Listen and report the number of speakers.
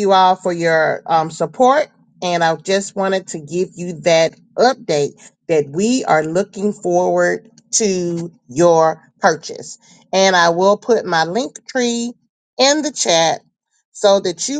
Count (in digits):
1